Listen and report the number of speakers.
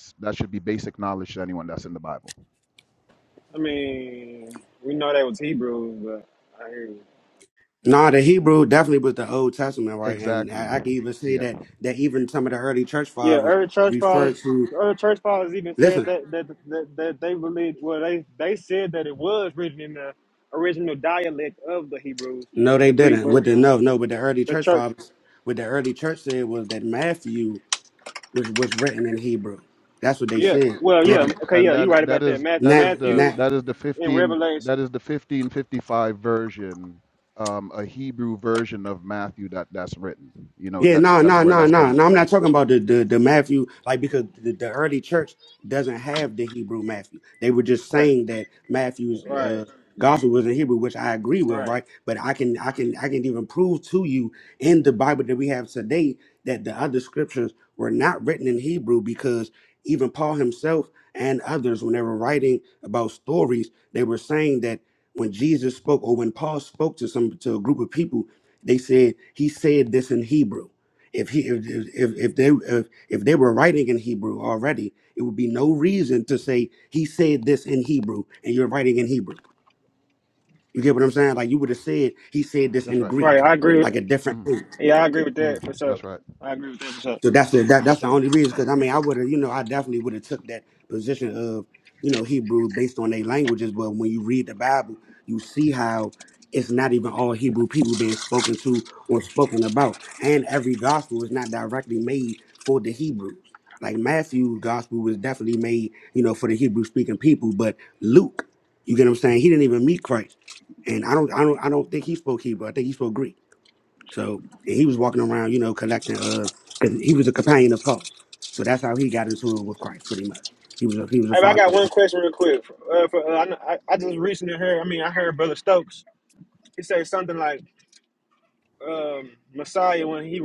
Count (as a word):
three